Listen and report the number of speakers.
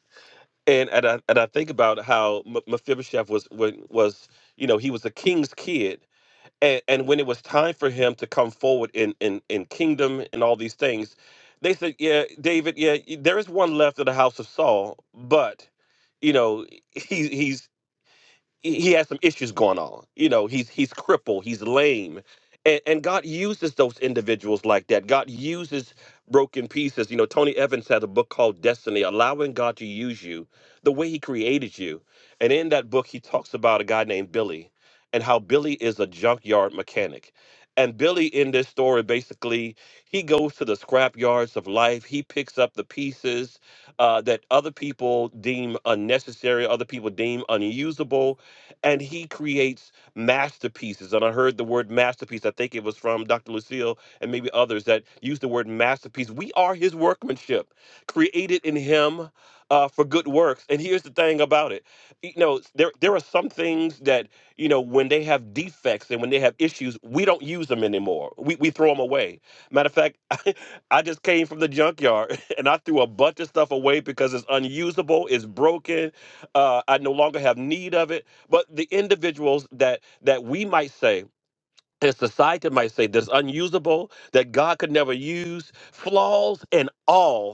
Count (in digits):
1